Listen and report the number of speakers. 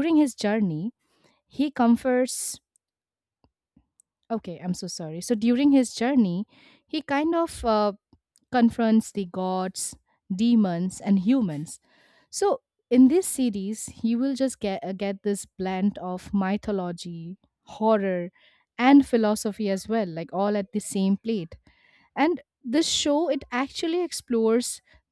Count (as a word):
one